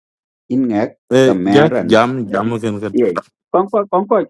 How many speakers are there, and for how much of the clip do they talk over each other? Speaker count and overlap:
two, about 17%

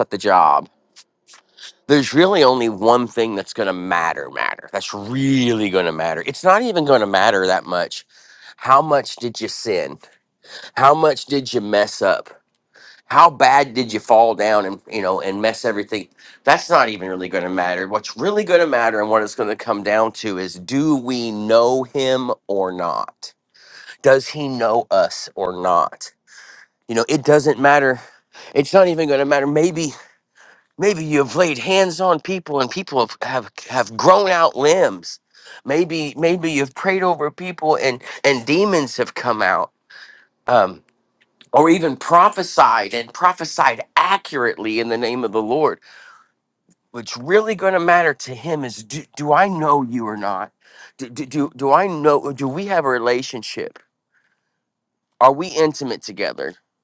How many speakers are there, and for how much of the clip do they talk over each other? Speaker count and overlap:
one, no overlap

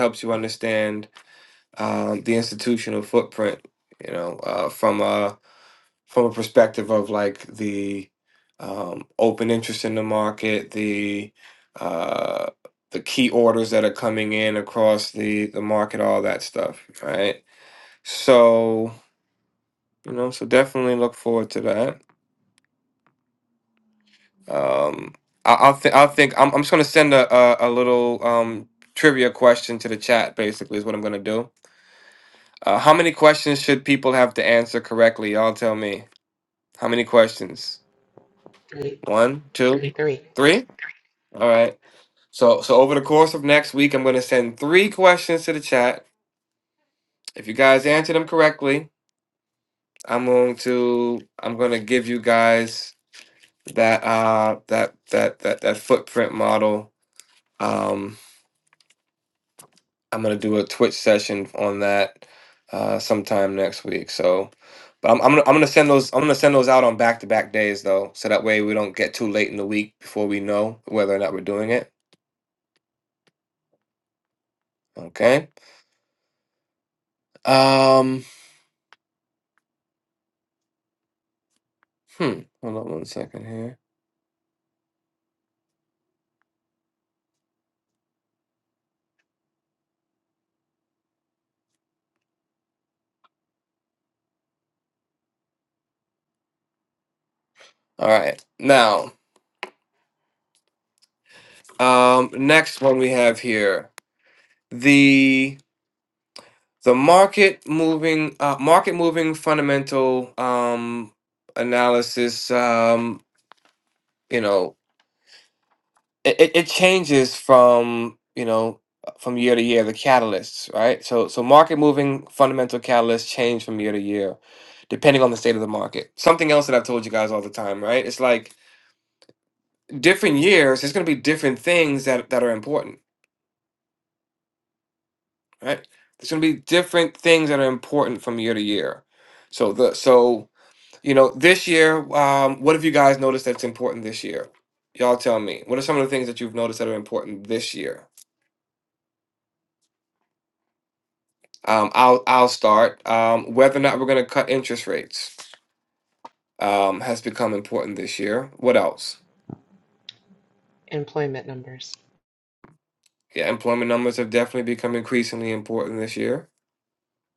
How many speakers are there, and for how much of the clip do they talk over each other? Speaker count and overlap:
two, no overlap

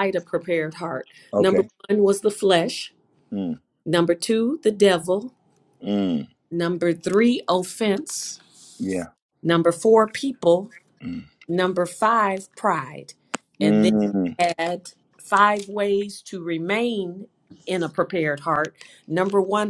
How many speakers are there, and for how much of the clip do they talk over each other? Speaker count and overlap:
two, about 3%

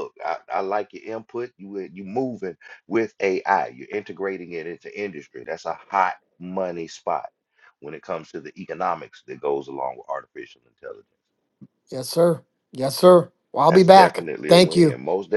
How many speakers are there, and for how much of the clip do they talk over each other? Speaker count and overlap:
two, about 8%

